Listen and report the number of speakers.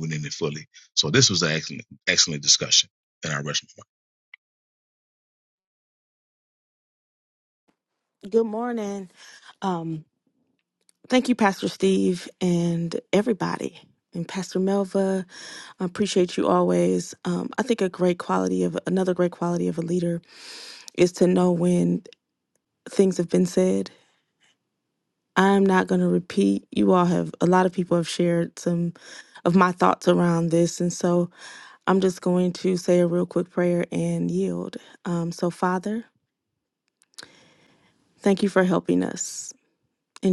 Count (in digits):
2